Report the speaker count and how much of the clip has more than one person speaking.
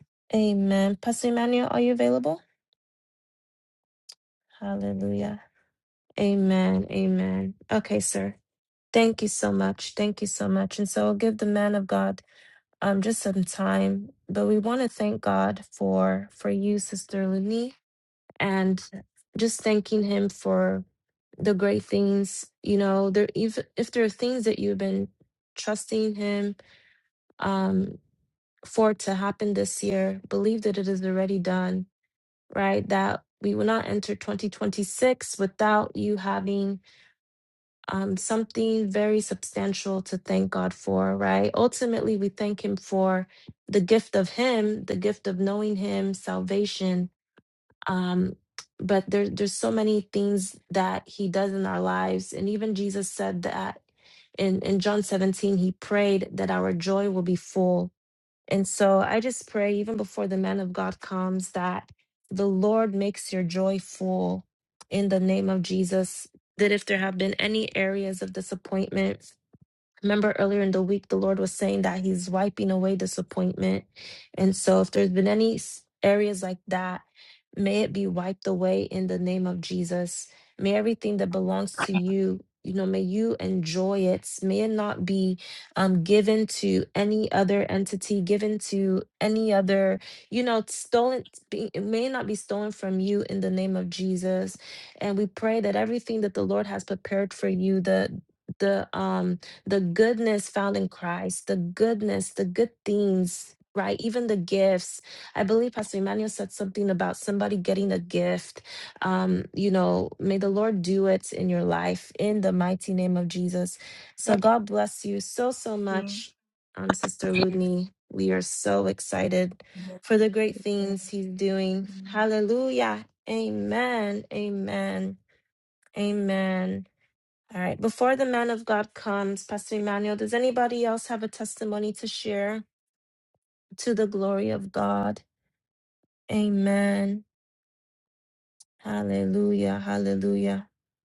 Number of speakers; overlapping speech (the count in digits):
1, no overlap